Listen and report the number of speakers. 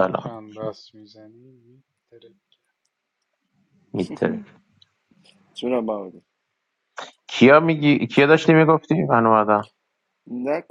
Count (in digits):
3